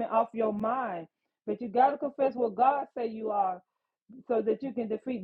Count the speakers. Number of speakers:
1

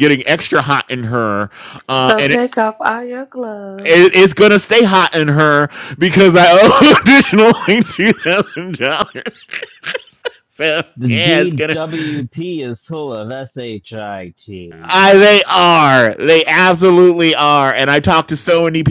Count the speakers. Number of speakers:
3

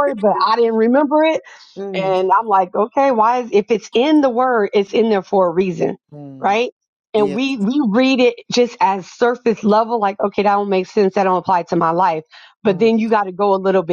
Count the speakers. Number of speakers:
2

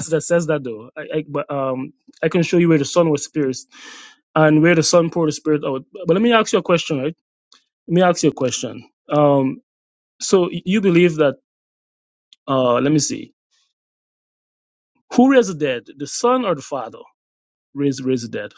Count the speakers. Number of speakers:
1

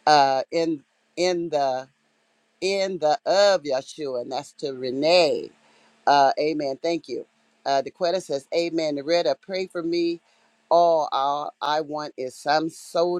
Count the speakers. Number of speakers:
1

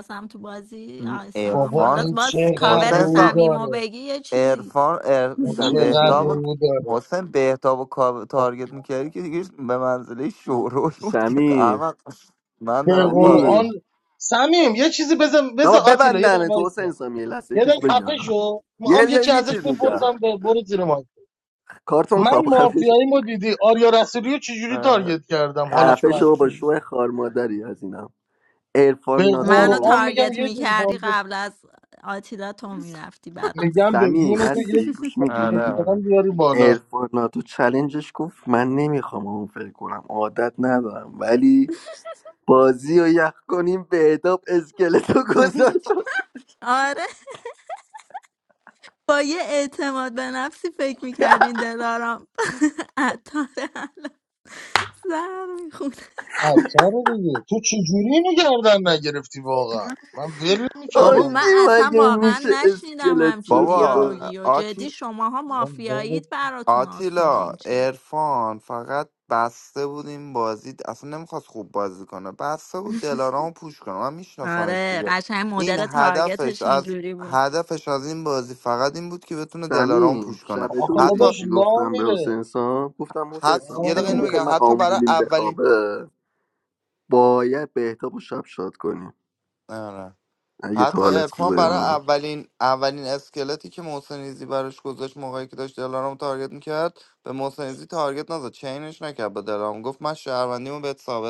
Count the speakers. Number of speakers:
4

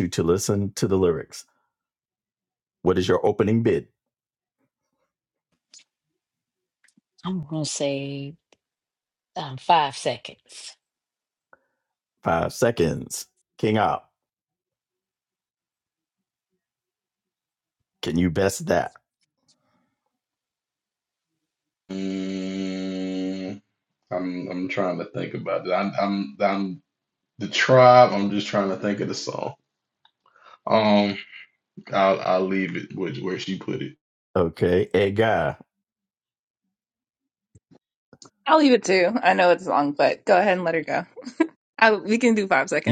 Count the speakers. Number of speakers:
4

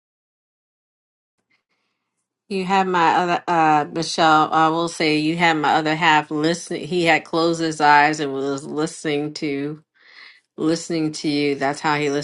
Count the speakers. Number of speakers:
1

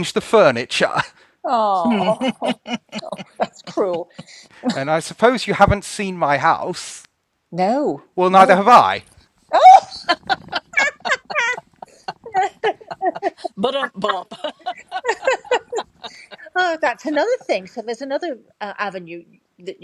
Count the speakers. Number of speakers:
3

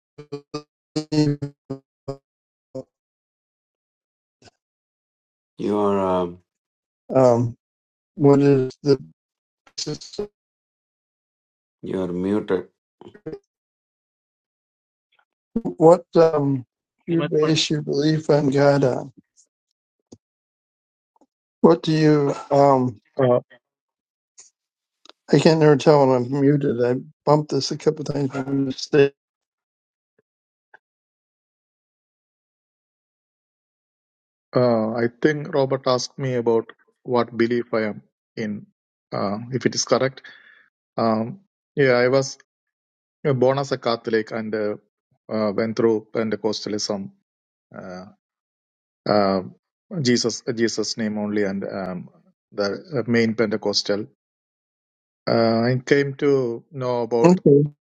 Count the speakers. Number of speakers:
3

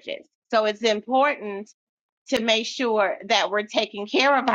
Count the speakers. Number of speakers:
1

